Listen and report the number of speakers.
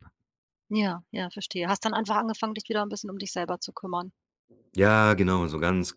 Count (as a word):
two